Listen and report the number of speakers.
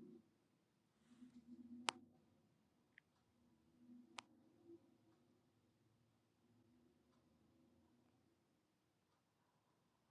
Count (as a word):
zero